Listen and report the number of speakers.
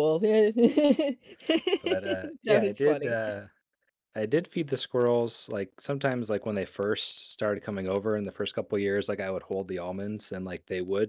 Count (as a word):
two